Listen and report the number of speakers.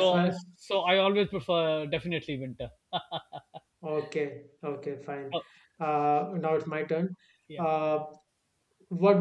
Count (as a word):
two